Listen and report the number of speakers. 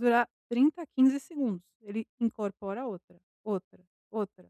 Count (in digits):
1